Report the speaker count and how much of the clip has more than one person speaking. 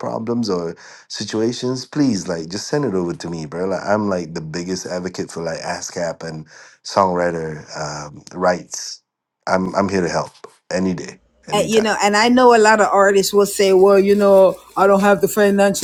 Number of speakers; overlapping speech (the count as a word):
two, about 3%